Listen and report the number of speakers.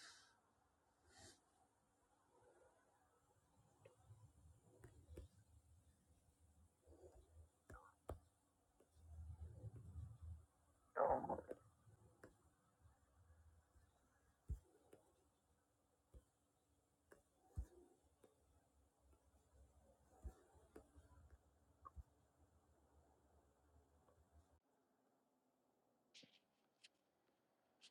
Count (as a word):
zero